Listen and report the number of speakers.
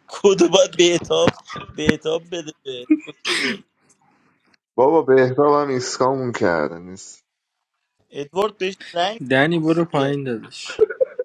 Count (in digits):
3